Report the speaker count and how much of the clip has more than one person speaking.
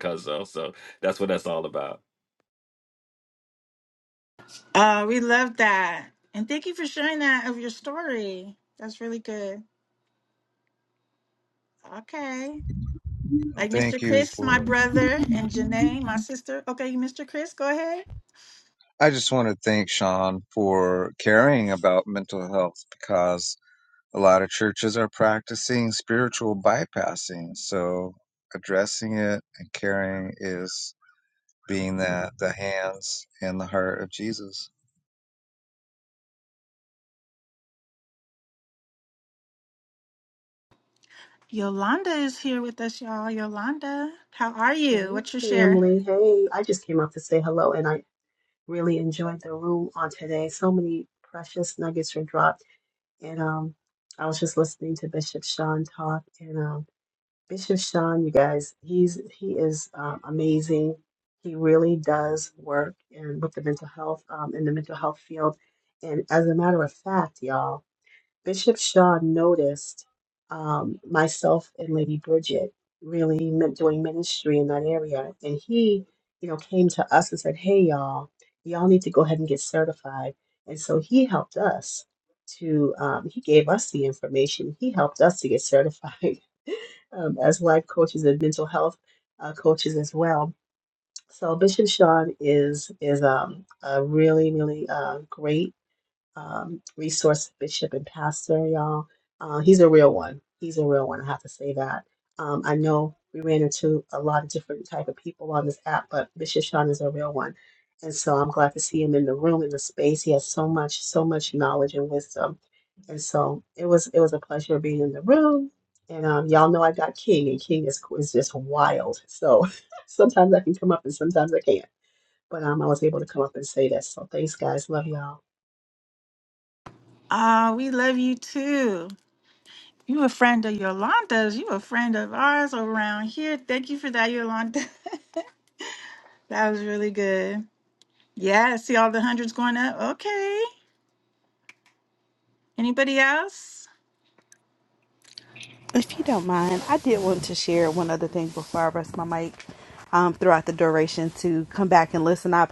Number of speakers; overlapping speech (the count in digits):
5, about 1%